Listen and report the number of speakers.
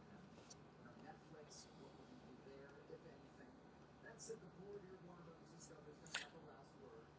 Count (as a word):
zero